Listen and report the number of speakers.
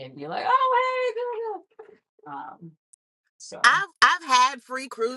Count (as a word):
two